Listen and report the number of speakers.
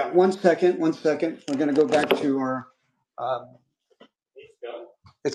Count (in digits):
1